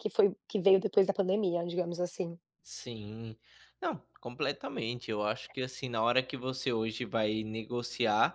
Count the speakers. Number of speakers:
two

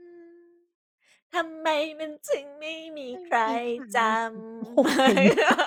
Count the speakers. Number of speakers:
two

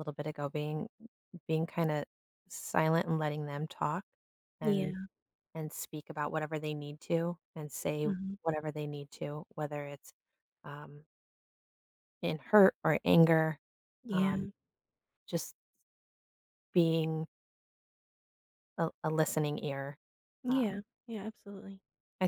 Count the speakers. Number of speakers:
two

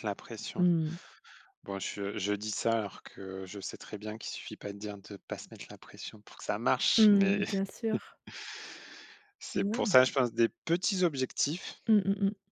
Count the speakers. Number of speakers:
two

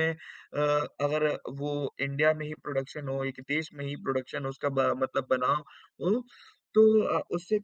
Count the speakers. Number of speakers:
one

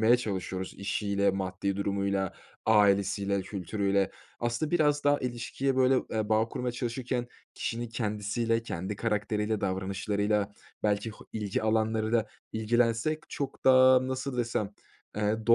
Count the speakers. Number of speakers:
one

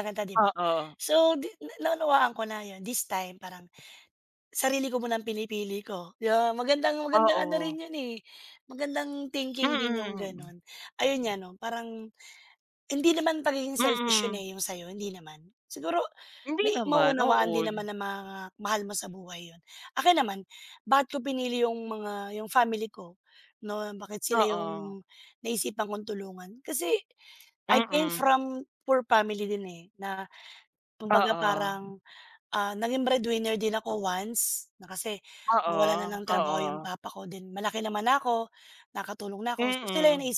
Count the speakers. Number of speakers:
two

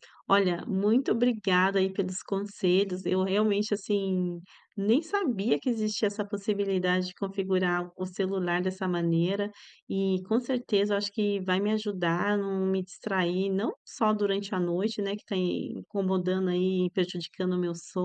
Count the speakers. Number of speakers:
one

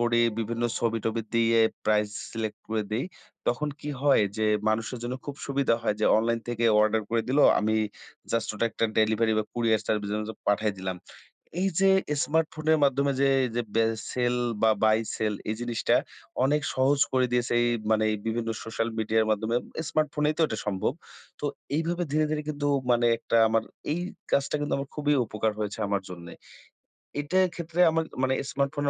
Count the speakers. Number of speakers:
one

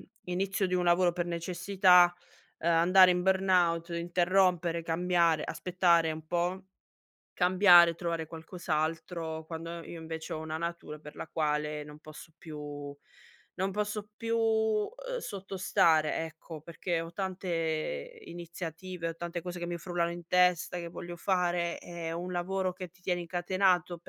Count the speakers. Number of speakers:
one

